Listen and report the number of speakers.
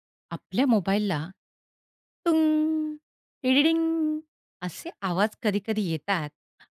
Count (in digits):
1